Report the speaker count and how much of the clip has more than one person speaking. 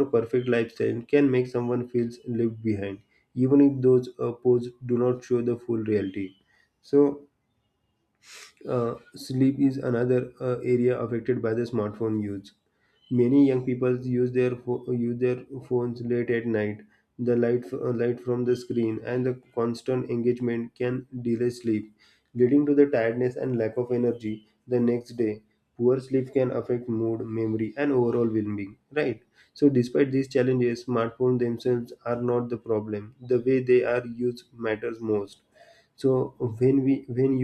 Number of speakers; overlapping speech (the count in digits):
1, no overlap